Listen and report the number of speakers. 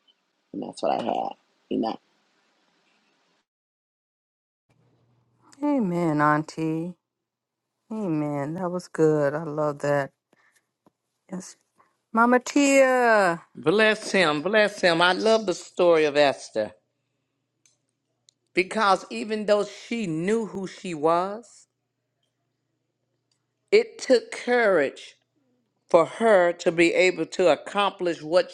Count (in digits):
3